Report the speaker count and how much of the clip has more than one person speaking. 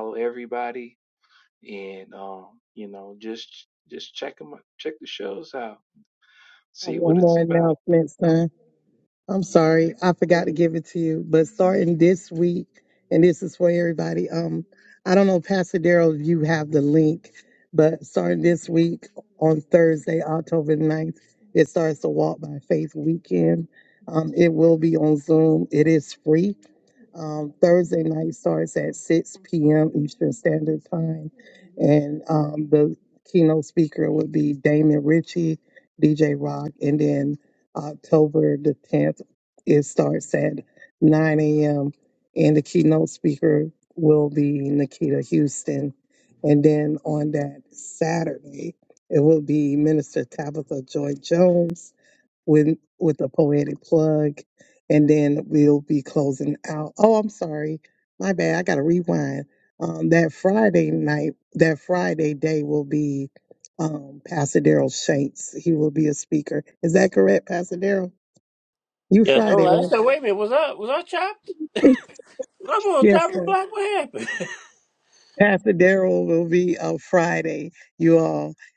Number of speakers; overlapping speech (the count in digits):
3, about 3%